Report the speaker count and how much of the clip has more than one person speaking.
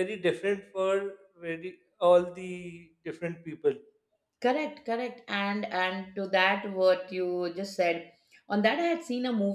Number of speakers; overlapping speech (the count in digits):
2, no overlap